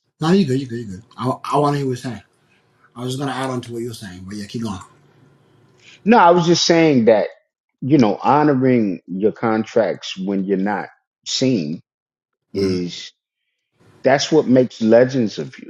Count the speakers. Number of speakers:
two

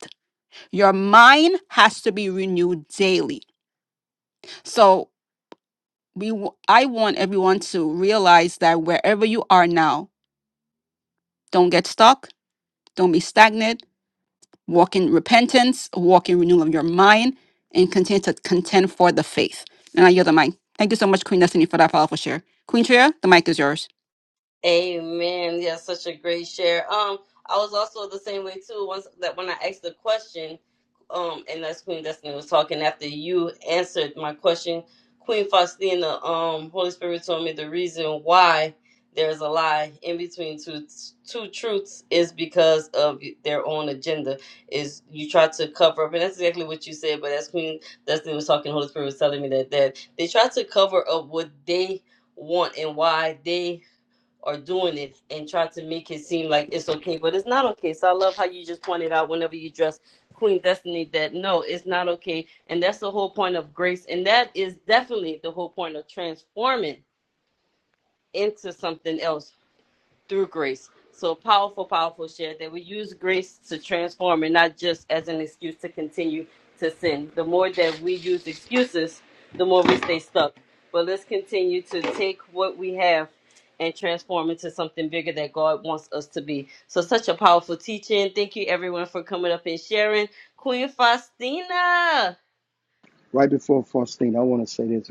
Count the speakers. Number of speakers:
three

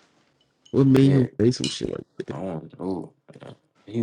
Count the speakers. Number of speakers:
two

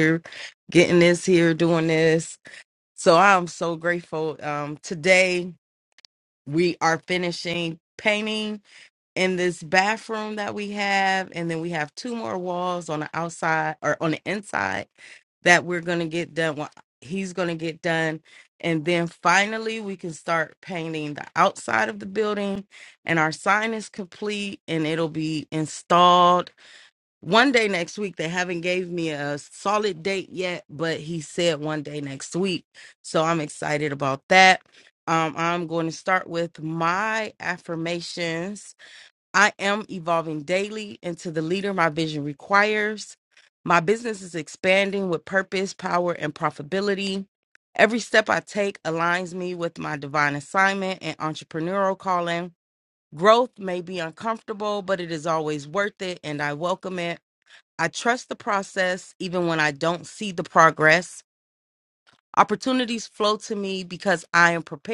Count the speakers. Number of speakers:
one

